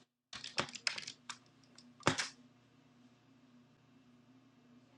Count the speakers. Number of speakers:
zero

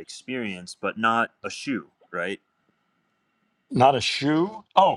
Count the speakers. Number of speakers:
two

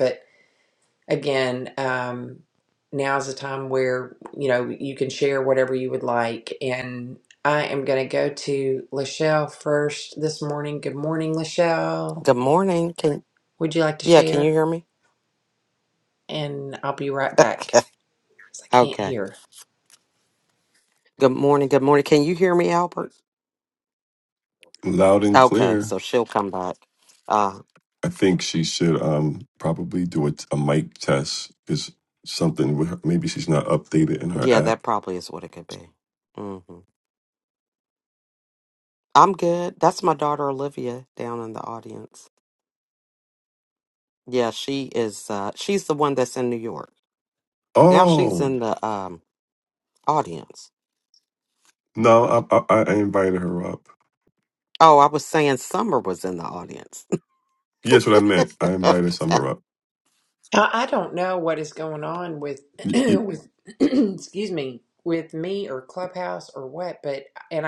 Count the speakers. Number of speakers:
three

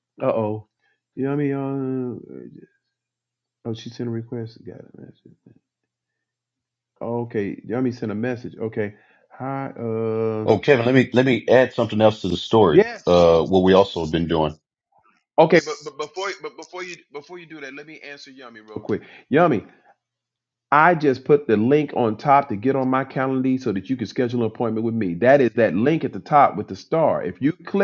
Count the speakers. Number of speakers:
two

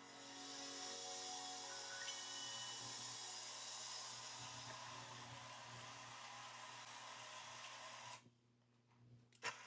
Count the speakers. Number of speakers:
zero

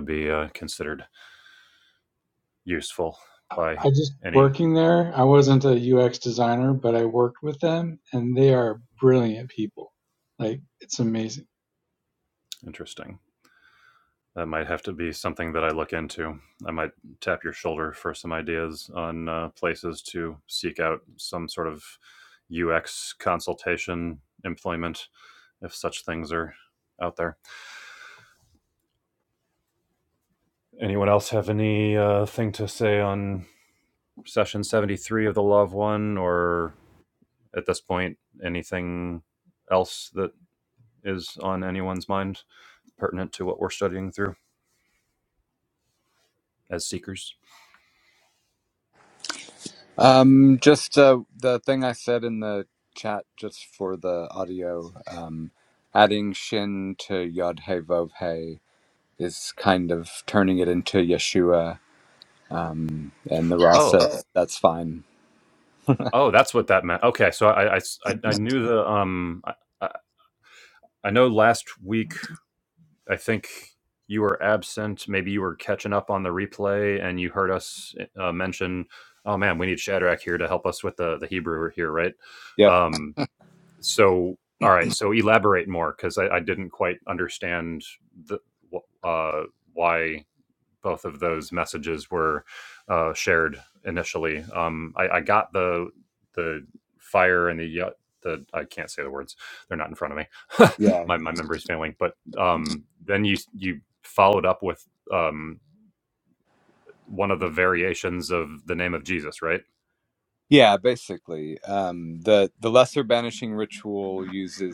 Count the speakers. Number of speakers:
three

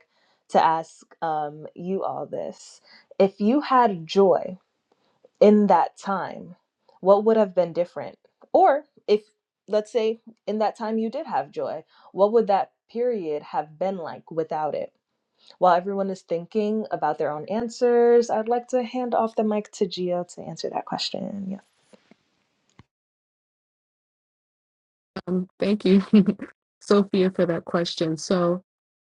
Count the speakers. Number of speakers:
two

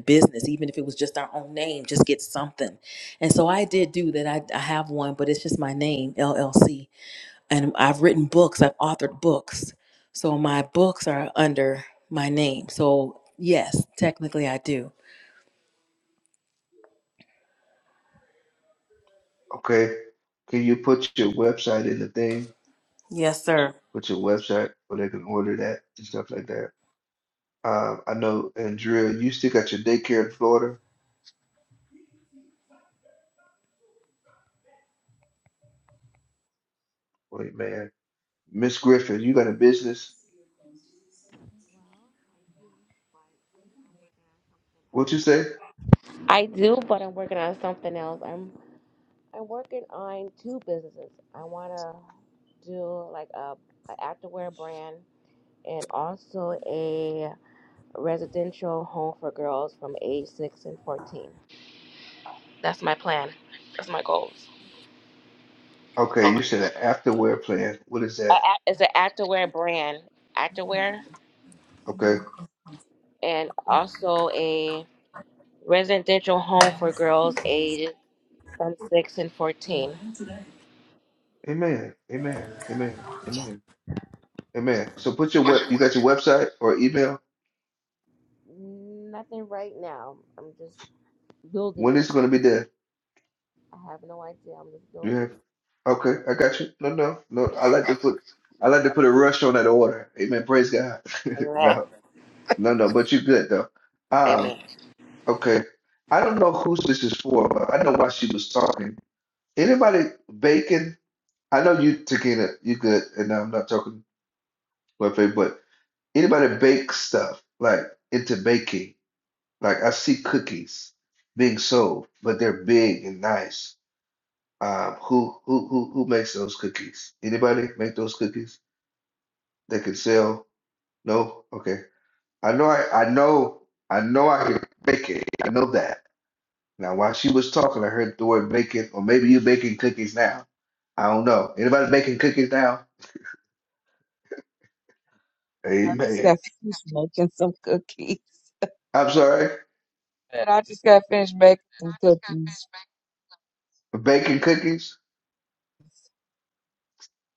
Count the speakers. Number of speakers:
four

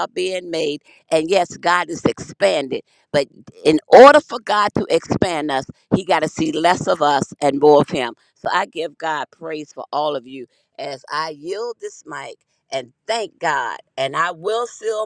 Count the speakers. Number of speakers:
one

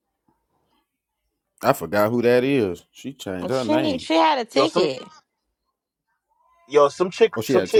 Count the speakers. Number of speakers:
three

